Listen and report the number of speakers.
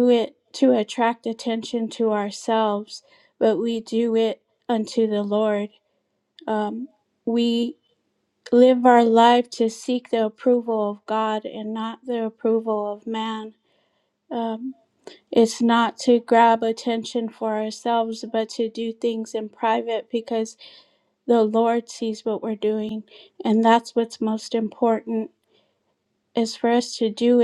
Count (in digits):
1